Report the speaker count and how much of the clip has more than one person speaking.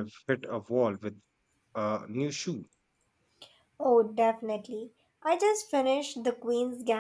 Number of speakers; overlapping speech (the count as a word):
two, no overlap